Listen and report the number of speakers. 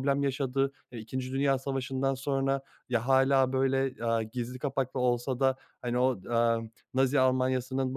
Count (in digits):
1